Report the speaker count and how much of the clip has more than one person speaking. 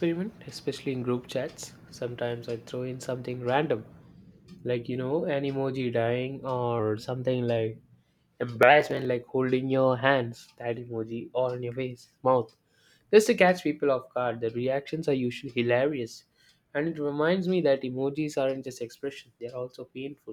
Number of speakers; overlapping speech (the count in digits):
1, no overlap